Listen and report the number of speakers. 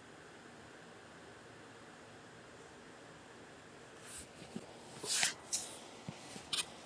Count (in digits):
0